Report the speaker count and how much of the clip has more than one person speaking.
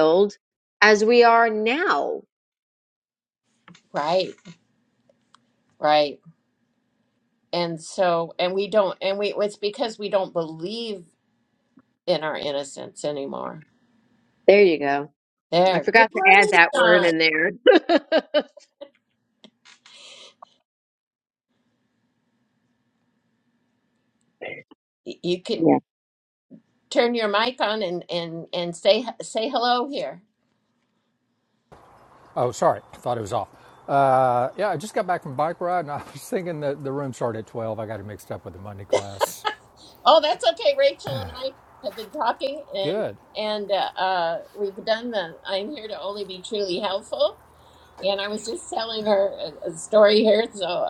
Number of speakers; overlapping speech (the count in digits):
3, about 3%